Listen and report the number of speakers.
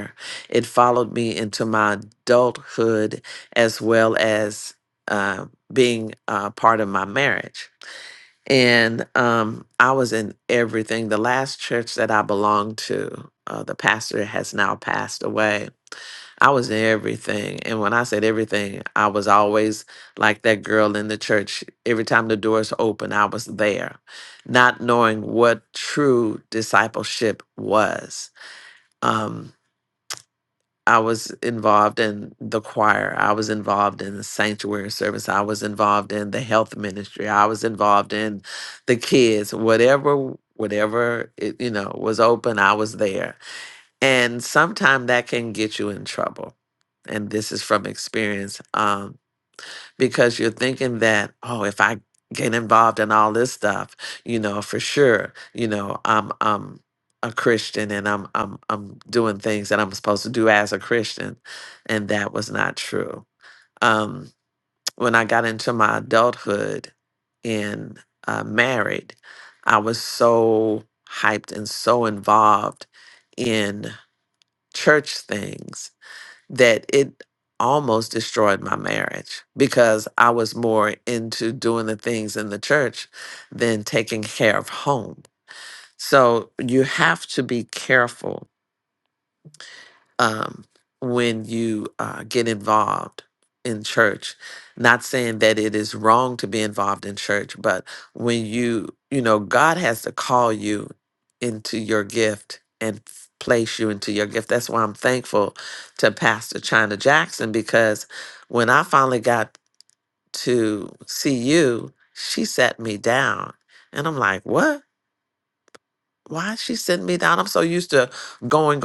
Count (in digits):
1